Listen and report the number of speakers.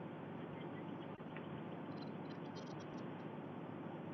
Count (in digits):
0